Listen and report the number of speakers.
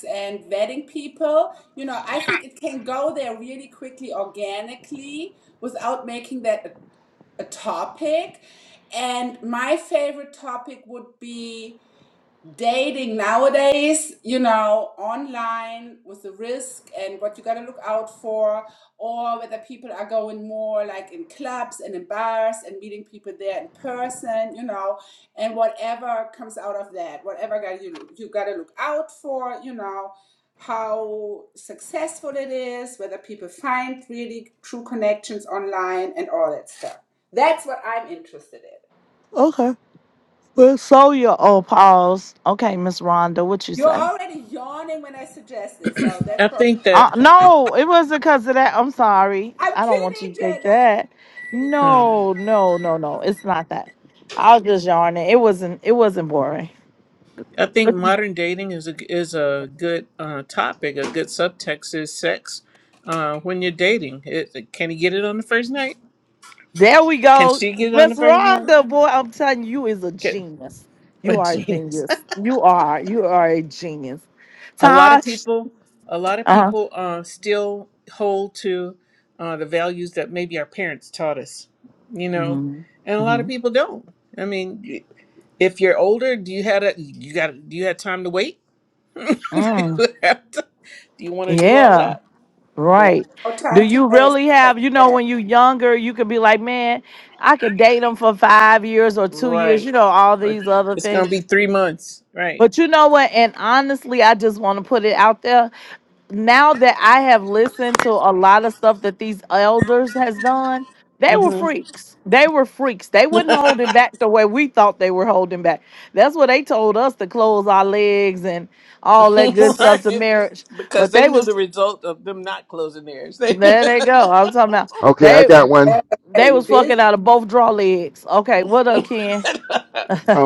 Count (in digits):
4